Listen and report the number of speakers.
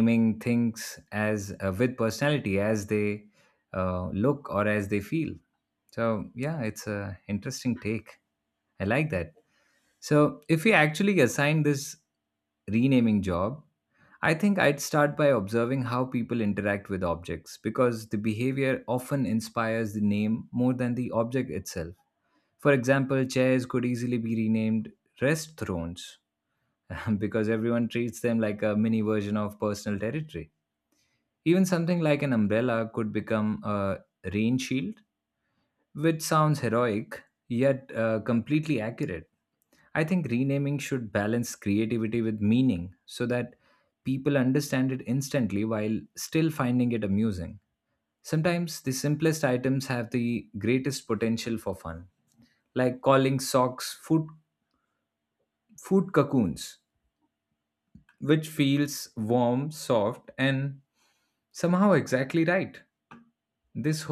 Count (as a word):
one